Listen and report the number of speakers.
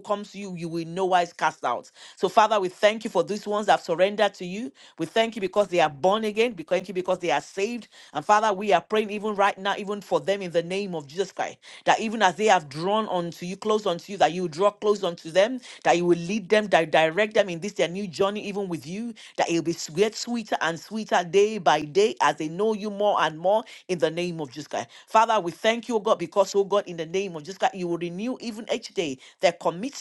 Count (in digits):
1